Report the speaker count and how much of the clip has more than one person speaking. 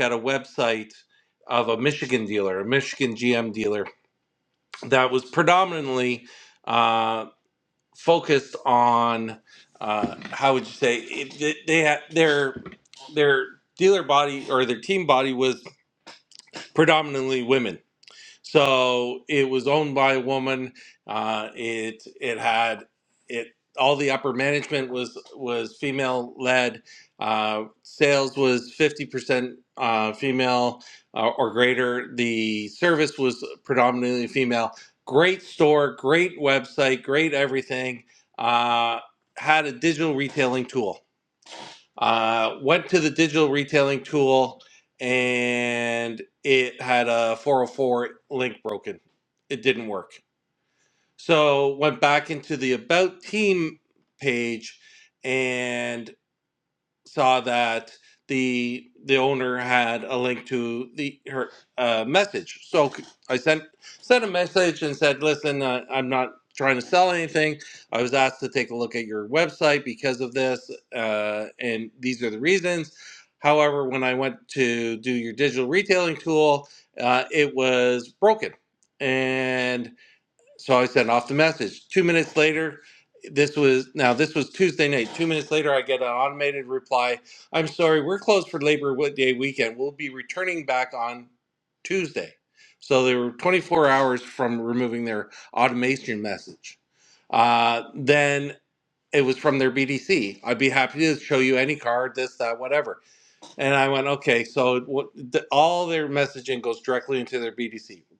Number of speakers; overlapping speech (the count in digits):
1, no overlap